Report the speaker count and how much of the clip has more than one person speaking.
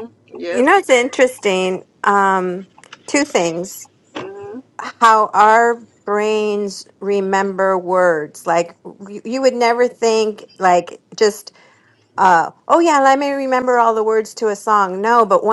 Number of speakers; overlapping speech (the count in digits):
2, about 2%